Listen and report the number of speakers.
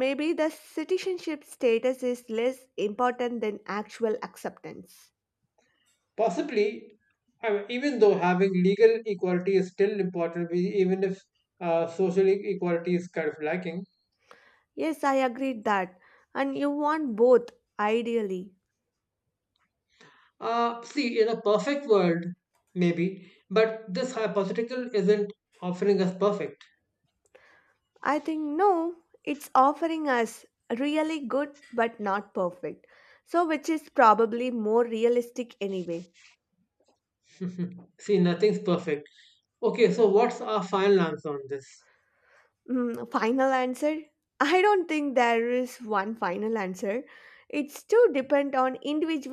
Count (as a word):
two